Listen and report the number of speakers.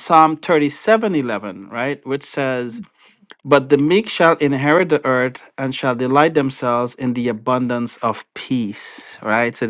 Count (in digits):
1